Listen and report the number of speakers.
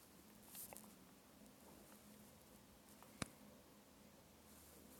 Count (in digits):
0